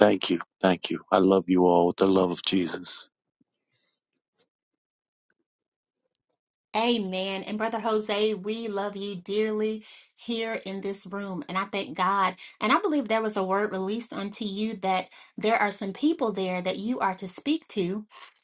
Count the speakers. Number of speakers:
two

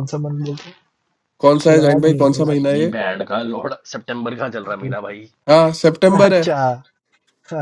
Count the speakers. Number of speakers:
three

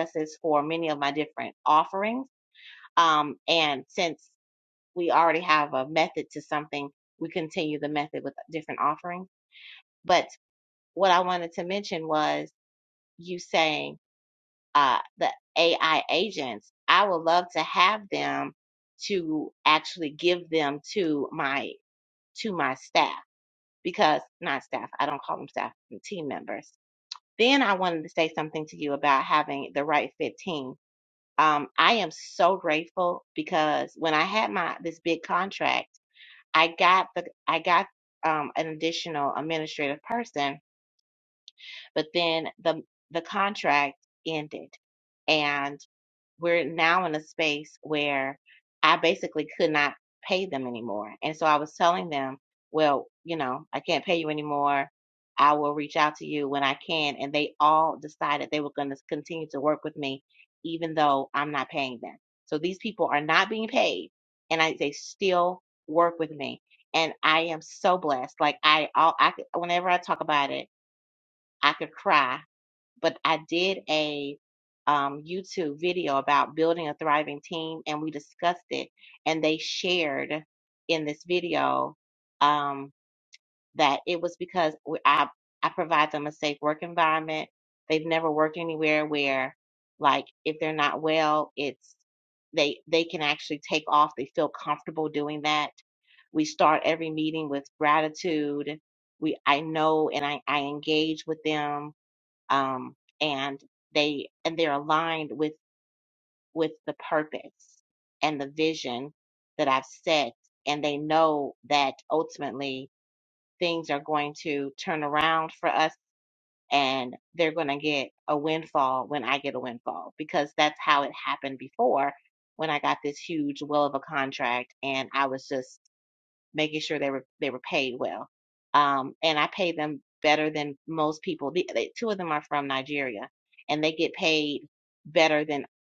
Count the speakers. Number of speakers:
one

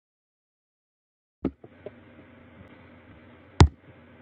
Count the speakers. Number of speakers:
zero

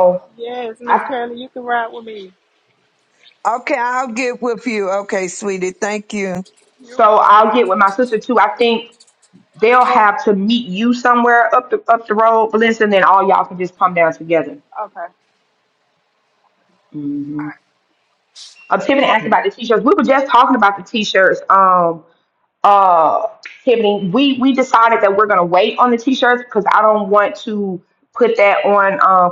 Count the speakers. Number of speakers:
three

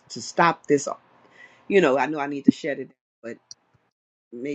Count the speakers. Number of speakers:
one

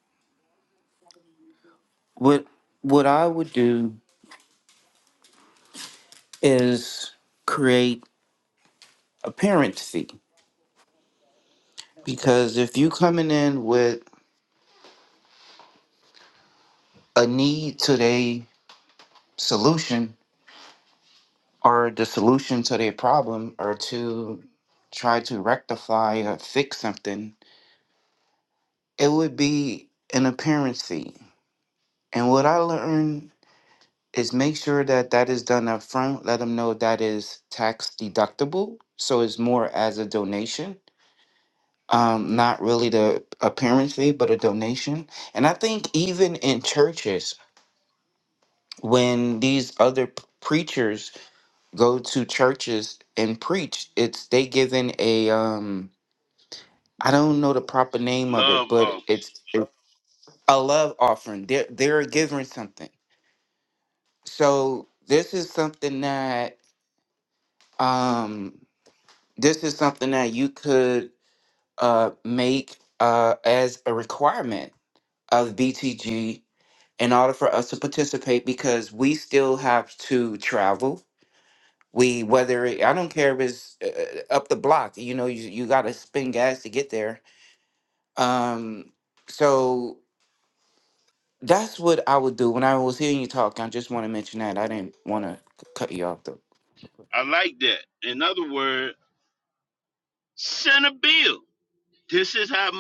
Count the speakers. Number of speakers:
two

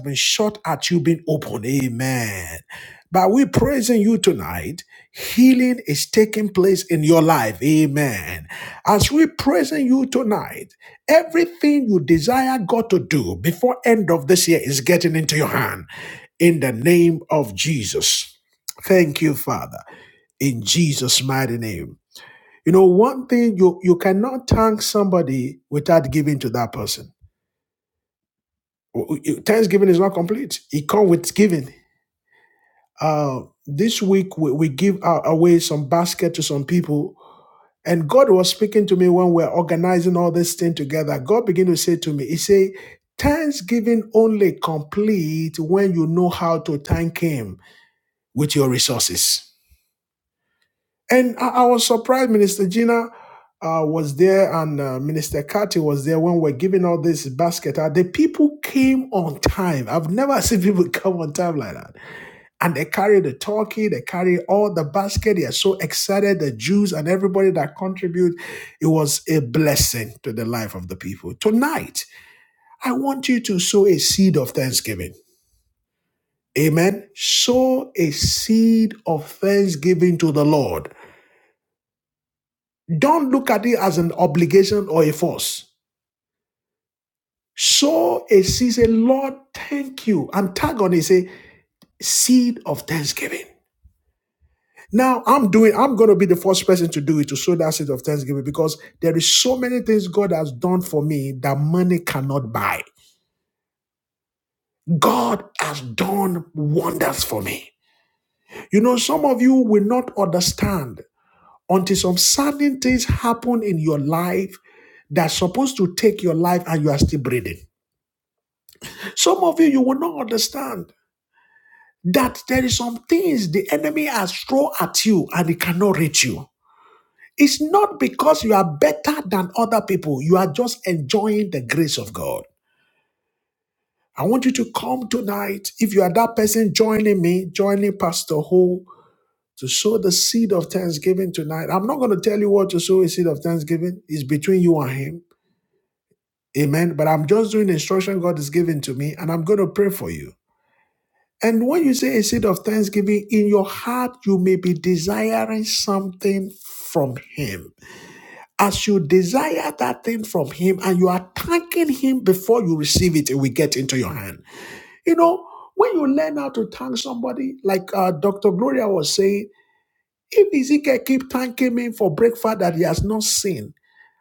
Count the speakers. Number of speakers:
one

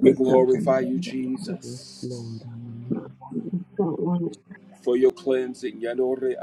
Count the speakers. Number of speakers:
three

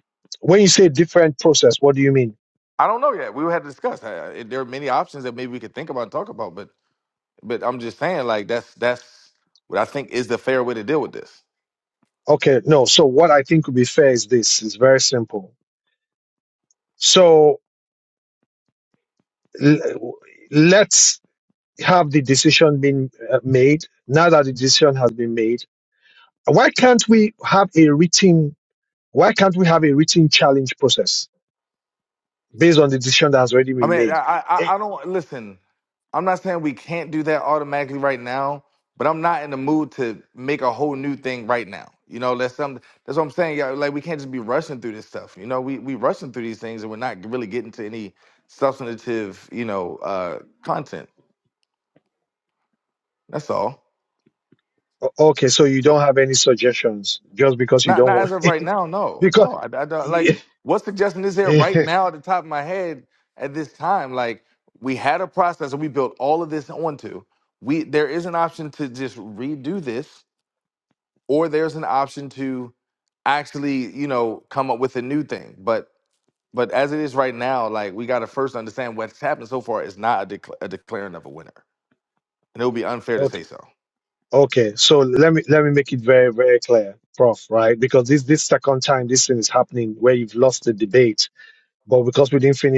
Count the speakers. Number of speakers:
two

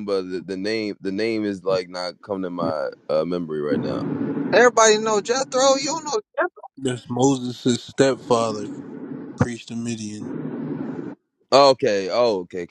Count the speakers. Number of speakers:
three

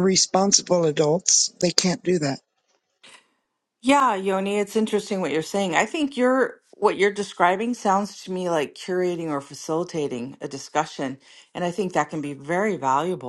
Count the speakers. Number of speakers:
two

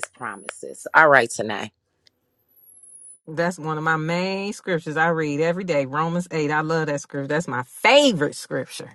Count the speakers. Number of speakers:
two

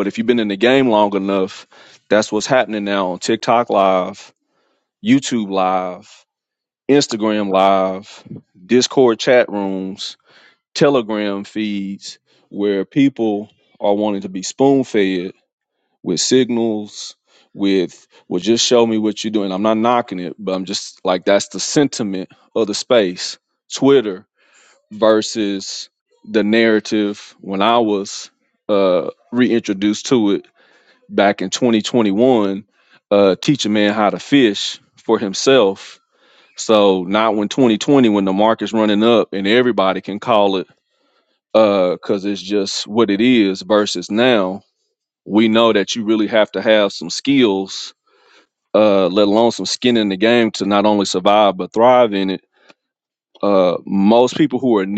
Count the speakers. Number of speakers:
one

